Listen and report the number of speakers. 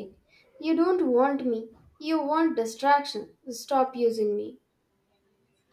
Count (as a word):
one